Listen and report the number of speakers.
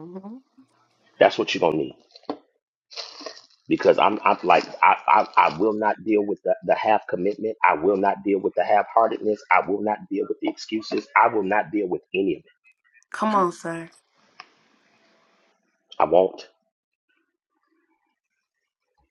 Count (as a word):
two